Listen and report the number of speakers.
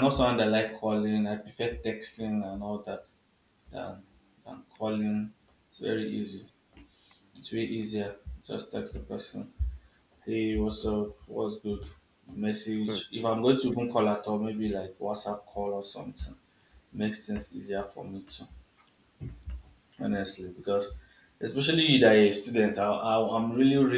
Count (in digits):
1